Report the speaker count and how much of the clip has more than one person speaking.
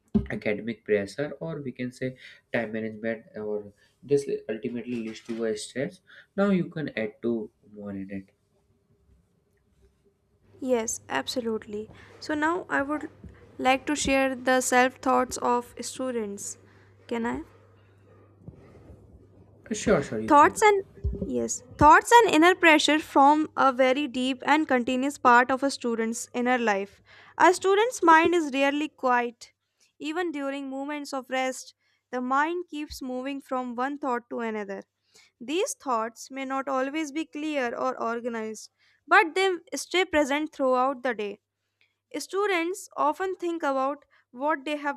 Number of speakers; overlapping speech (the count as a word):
two, about 1%